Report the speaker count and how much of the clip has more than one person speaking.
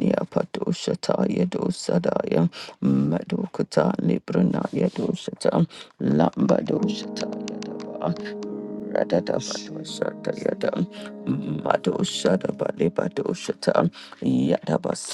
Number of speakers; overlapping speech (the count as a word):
one, no overlap